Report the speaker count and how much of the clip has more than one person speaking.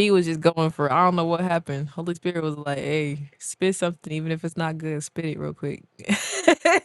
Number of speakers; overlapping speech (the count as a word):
one, no overlap